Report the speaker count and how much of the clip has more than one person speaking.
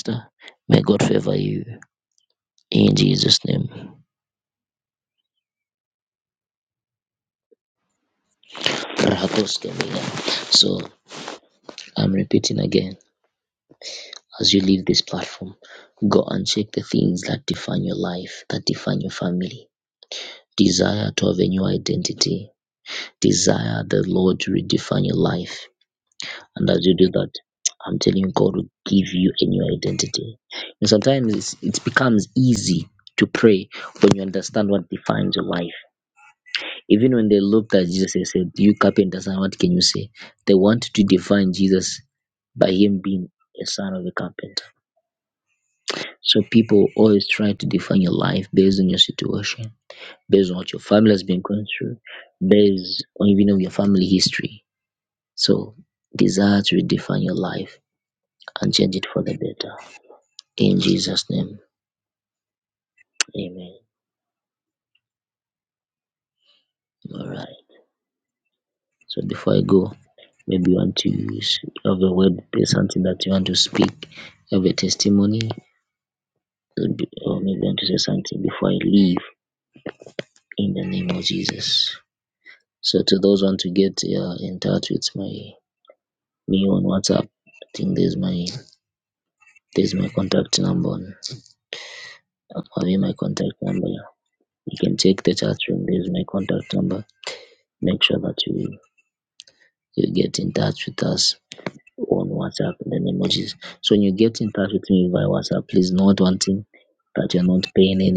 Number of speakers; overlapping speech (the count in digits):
1, no overlap